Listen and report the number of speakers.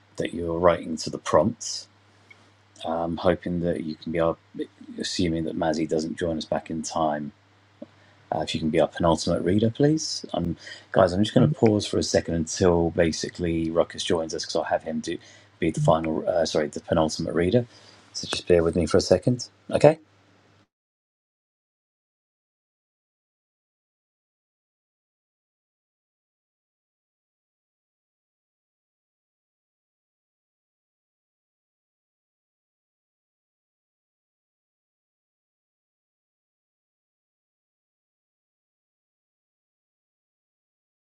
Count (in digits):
1